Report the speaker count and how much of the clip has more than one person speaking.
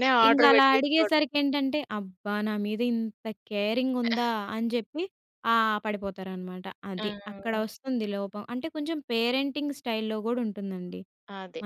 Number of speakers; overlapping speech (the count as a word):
two, about 14%